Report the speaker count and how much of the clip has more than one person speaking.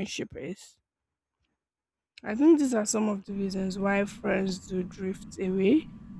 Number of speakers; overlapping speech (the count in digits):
1, no overlap